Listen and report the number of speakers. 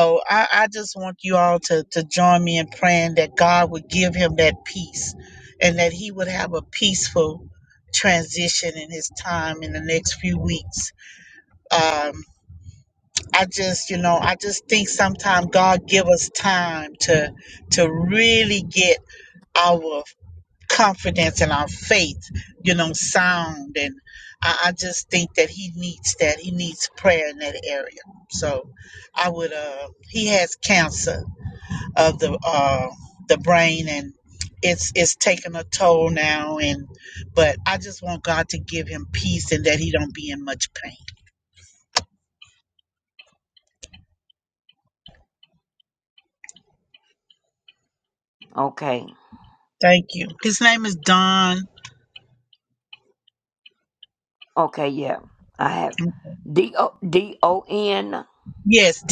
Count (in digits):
2